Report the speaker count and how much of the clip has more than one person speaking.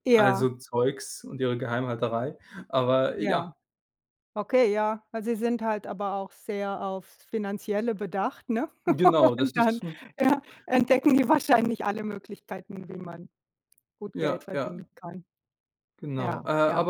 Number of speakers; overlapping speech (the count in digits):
2, about 14%